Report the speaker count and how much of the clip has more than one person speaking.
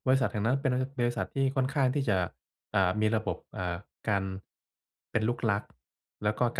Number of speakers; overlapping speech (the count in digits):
1, no overlap